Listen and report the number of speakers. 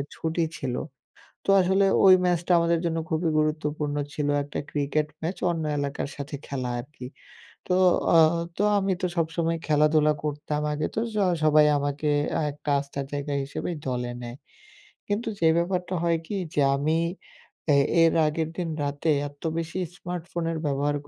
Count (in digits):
1